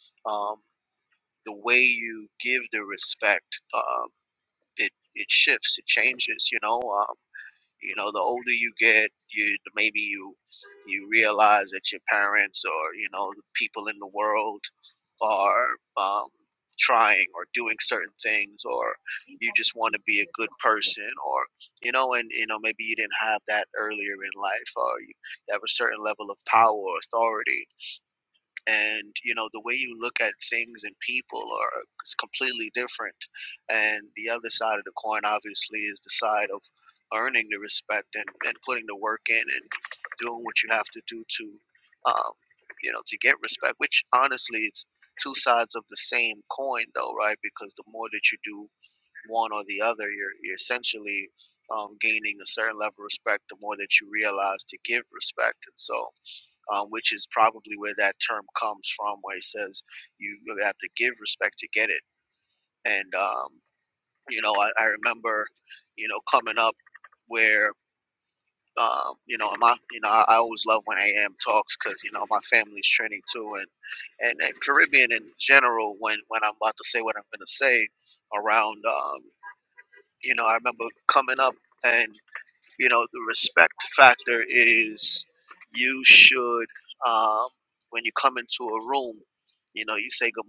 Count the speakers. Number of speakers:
one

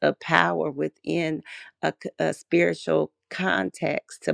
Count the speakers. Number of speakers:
one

